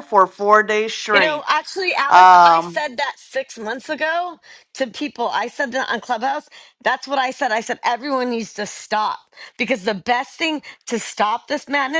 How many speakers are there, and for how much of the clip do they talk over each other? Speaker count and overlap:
2, about 8%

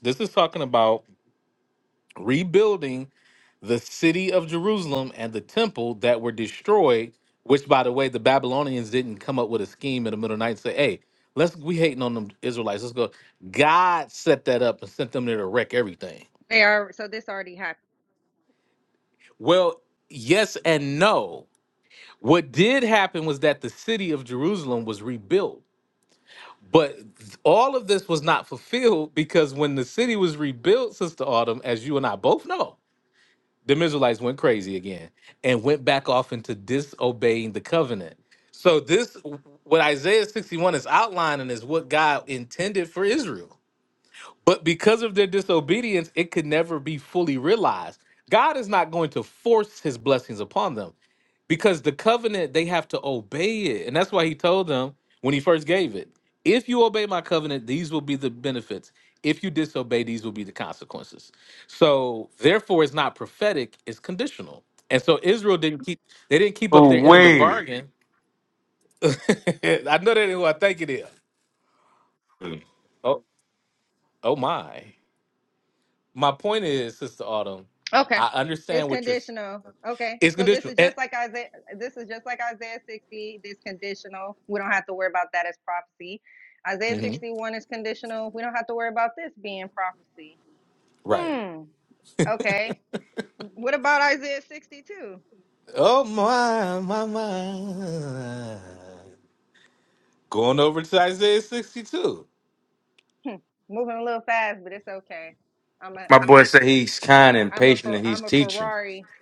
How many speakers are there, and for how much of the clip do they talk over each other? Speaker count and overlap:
3, about 3%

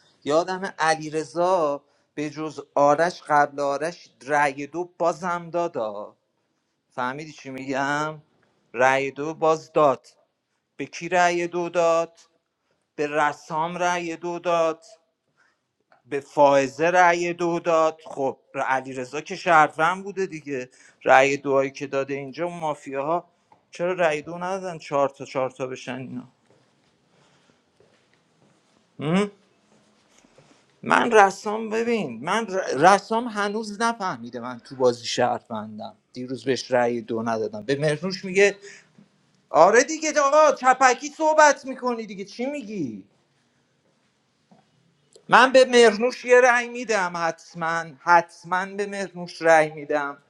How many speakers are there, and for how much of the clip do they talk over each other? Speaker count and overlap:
1, no overlap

